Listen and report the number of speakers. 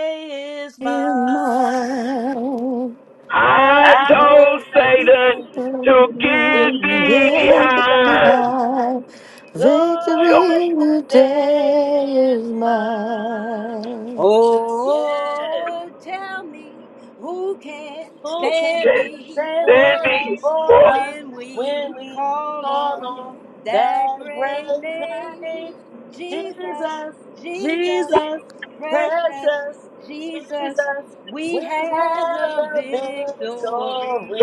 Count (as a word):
four